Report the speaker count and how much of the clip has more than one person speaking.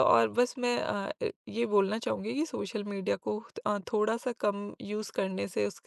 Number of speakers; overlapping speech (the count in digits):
1, no overlap